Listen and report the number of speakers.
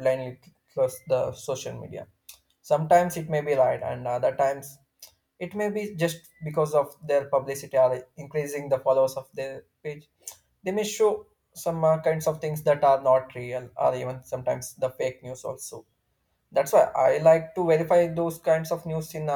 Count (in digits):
1